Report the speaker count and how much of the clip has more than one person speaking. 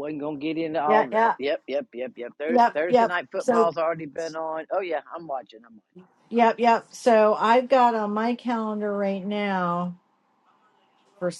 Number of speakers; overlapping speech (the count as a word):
two, about 12%